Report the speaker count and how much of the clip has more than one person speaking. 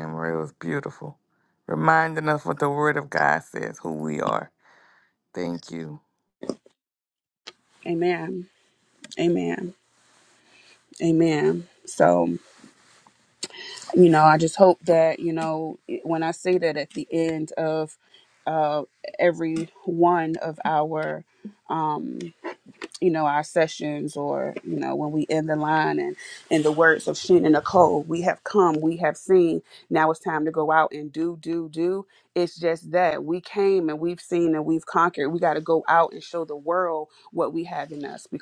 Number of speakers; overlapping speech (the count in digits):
2, no overlap